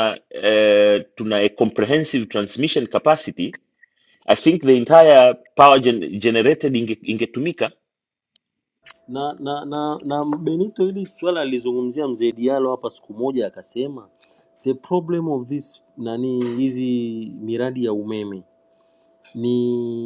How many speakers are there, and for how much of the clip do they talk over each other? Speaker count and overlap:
two, no overlap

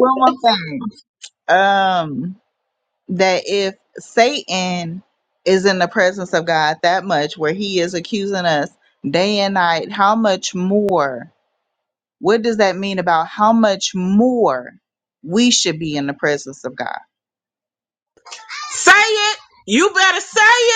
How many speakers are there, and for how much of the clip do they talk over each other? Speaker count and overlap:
two, no overlap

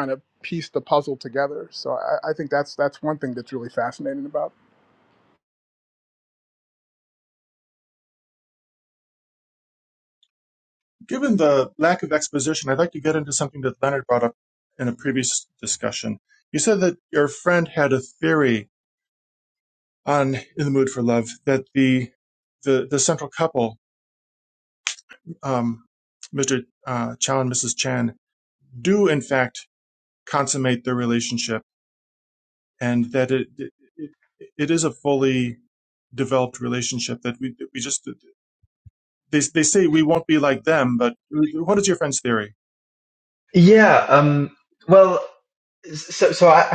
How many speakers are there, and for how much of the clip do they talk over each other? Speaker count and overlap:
three, no overlap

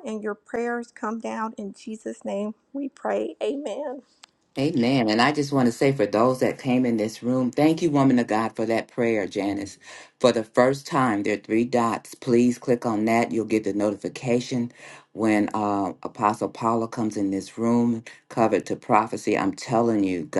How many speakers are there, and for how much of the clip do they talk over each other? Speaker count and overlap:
two, no overlap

